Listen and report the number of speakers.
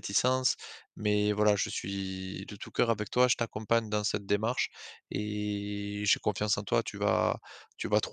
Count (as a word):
one